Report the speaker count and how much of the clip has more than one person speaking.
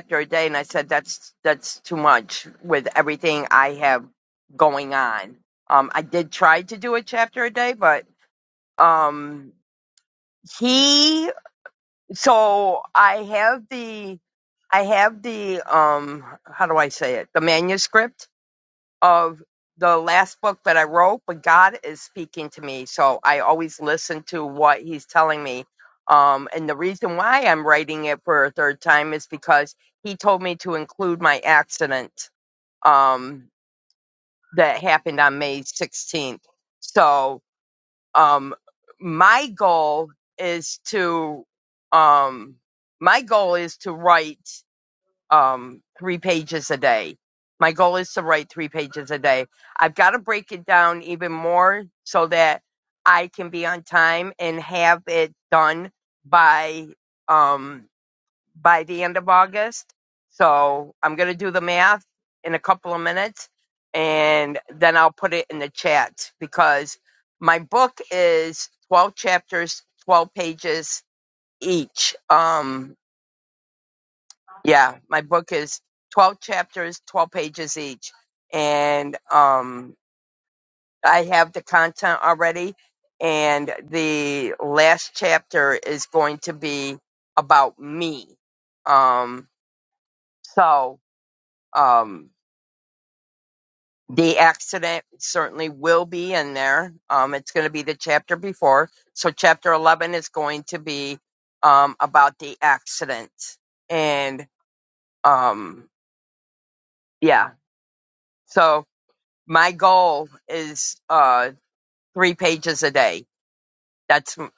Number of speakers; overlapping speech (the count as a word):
one, no overlap